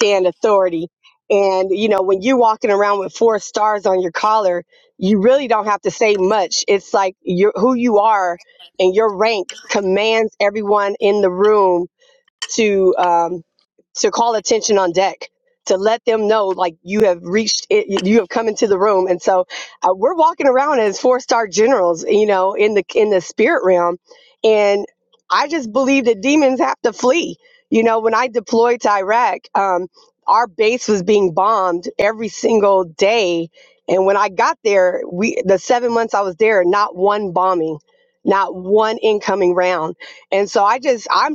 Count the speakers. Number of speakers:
one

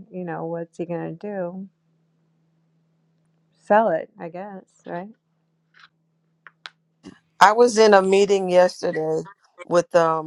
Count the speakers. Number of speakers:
two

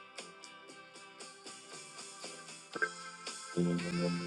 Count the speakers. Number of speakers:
zero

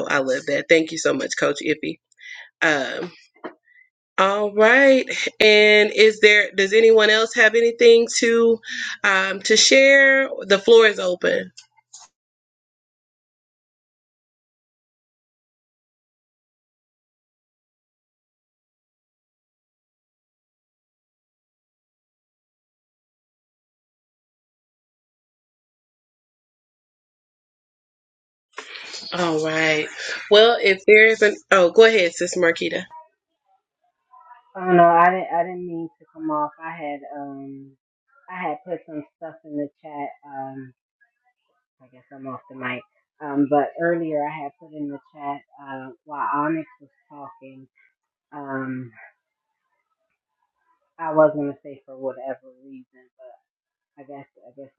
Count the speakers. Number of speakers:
two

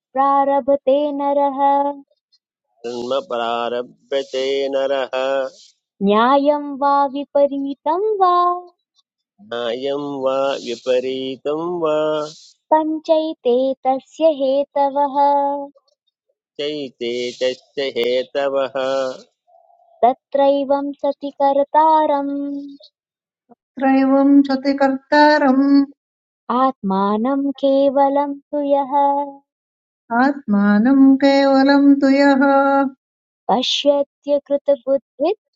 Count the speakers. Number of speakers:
three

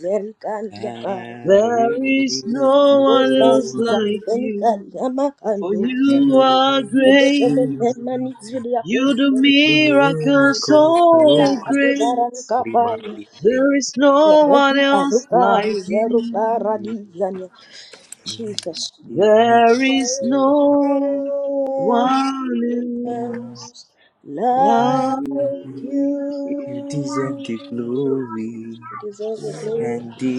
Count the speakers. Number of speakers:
three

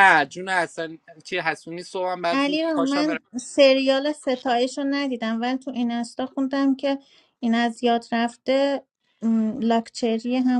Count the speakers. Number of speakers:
two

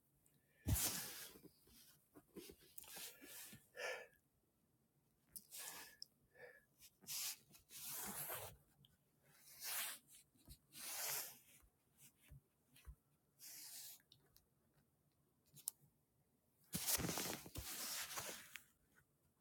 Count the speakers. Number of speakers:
zero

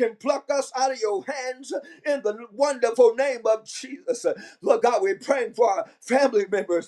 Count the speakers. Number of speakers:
one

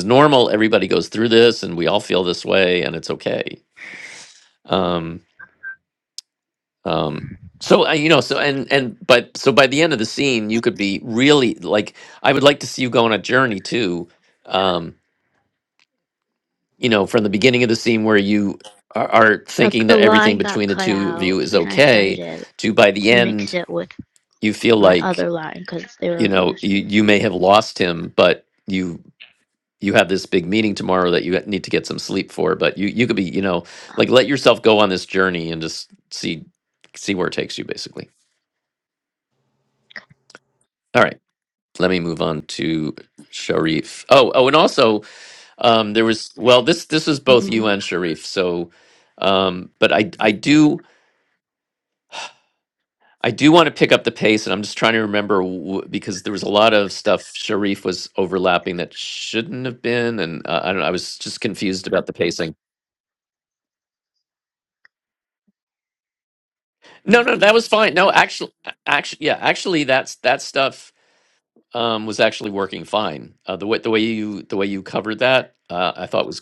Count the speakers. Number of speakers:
two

